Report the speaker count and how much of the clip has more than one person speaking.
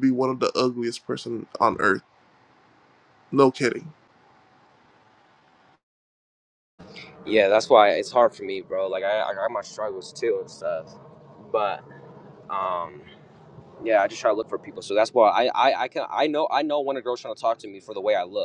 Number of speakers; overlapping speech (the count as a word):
two, no overlap